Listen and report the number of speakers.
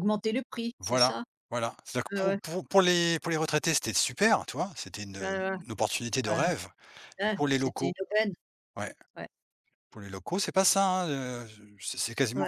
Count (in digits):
2